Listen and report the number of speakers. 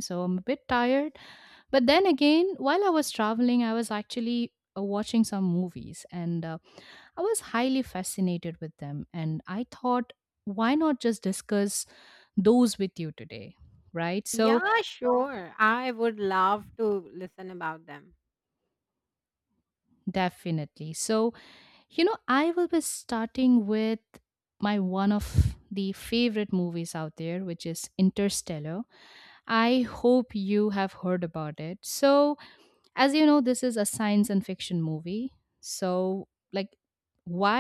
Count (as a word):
two